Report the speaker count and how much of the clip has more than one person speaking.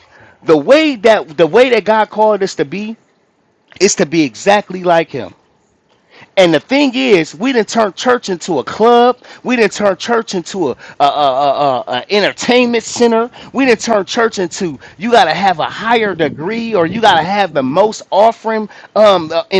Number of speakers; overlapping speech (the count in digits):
1, no overlap